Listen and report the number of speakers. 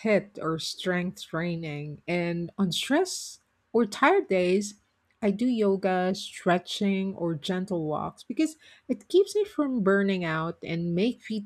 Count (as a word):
one